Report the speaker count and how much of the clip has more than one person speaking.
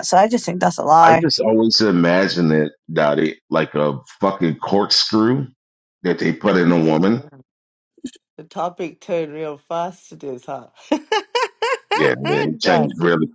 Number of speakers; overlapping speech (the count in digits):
3, about 9%